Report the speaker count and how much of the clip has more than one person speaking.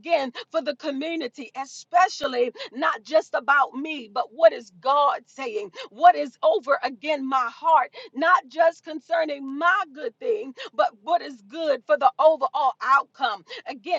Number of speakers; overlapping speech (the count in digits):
1, no overlap